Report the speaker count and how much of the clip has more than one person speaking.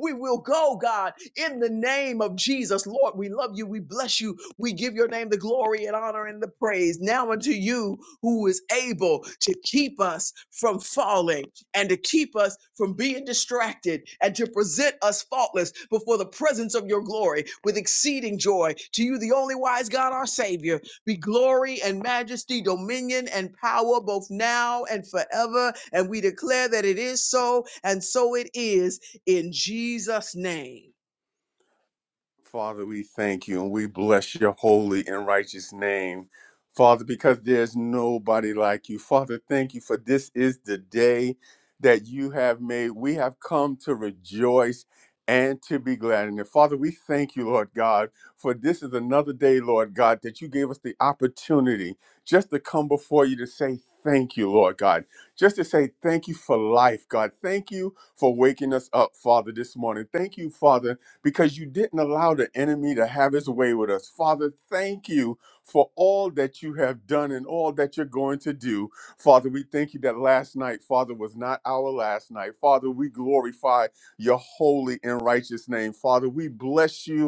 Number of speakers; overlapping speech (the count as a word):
two, no overlap